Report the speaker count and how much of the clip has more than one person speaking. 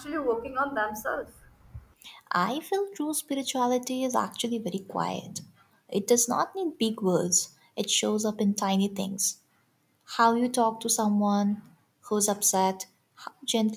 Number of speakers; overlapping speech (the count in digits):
2, no overlap